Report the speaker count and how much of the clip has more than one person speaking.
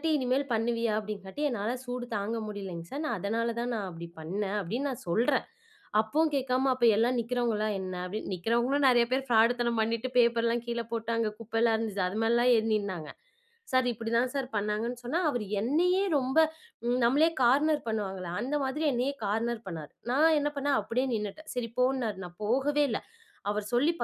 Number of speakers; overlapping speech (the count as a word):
one, no overlap